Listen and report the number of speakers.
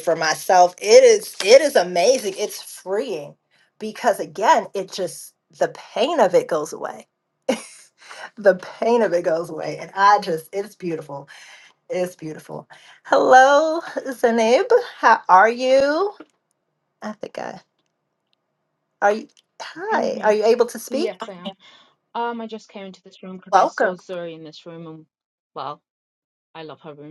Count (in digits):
2